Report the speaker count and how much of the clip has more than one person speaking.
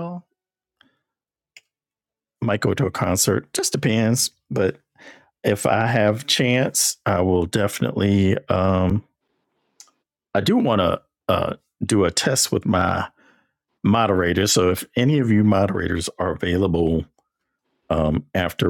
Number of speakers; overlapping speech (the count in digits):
1, no overlap